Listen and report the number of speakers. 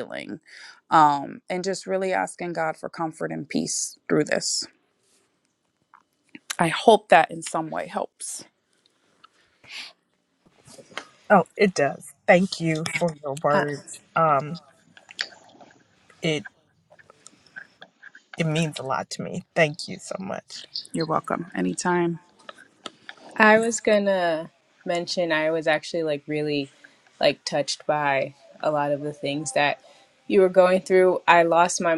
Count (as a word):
three